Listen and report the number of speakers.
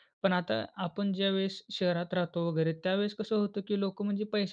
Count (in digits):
1